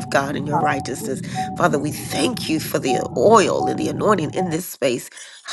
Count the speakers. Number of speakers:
1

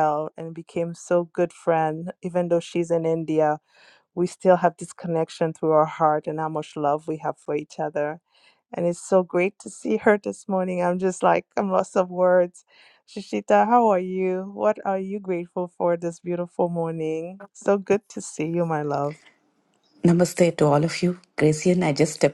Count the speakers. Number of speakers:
2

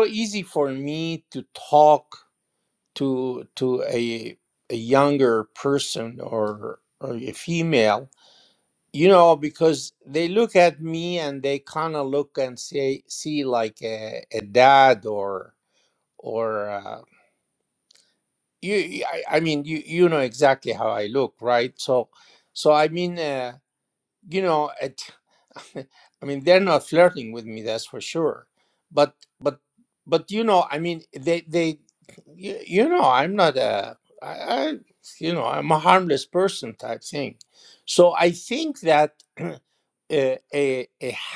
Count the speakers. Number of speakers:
1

